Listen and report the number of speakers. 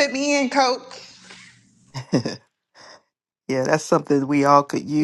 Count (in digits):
2